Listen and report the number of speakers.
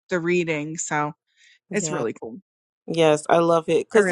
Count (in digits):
2